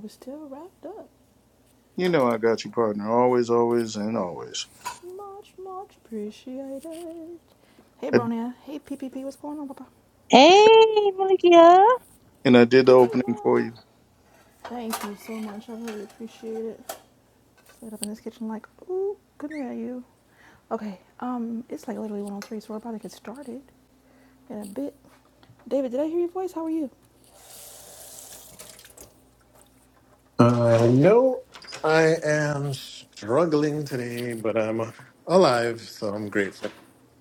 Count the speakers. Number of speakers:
4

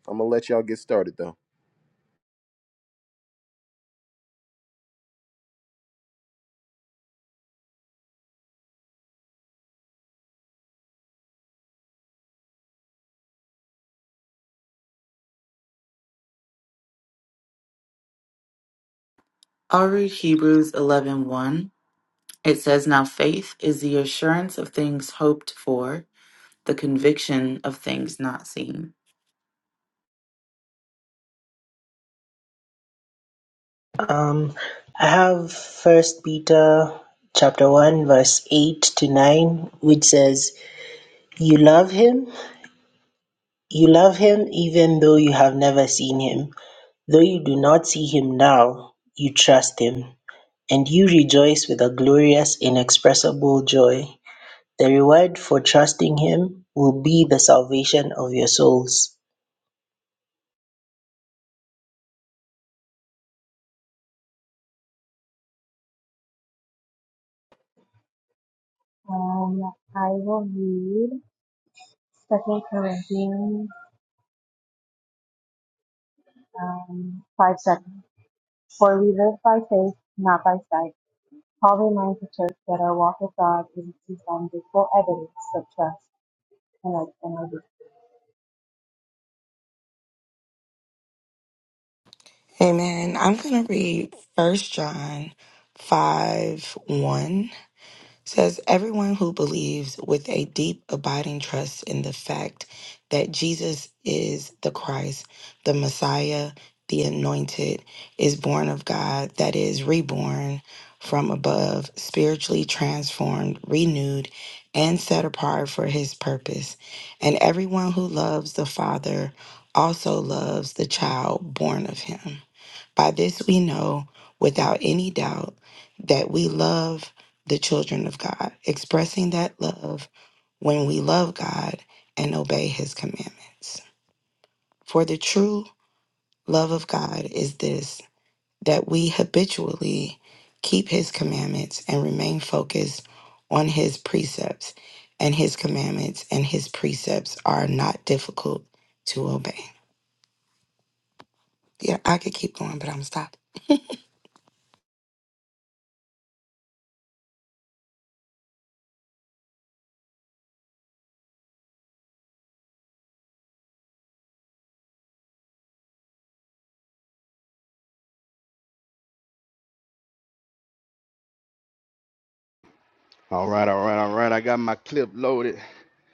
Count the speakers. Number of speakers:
6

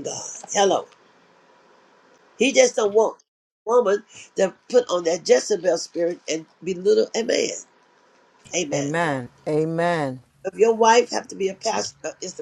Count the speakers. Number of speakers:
2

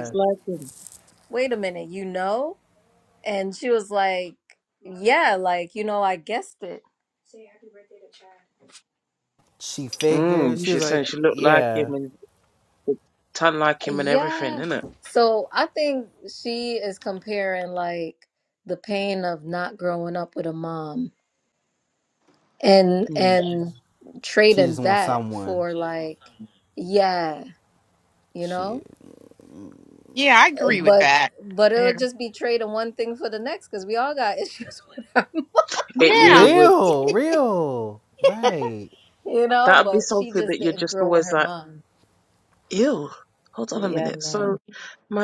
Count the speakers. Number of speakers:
4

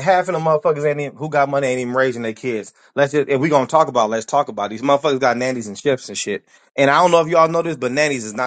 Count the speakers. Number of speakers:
1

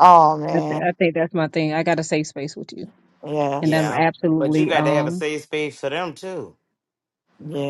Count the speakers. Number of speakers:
3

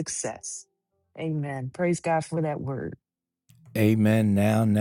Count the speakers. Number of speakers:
2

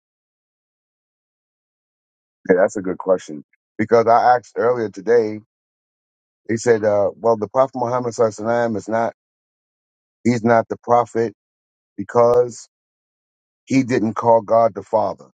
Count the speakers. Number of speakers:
1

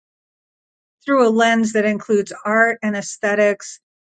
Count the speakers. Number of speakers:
1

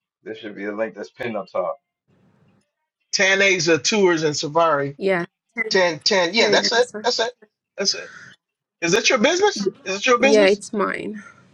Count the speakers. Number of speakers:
3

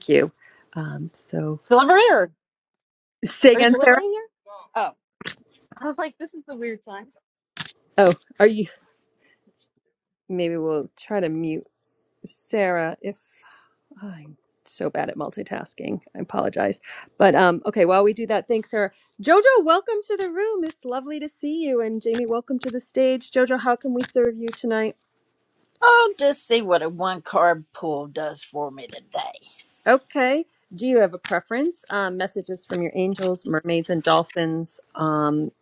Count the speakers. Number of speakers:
3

